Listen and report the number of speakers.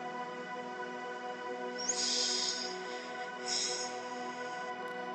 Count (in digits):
0